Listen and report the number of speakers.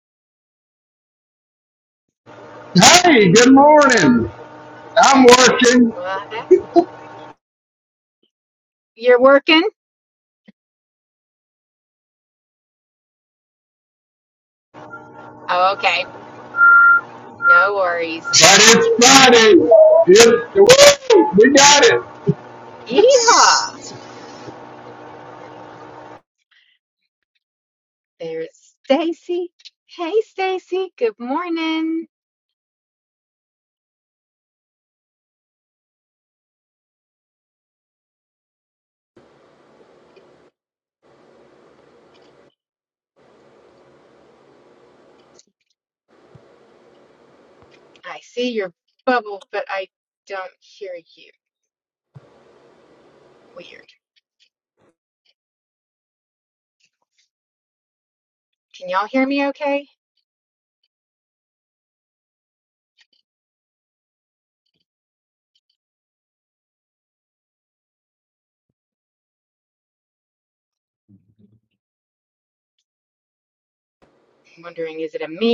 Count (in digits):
2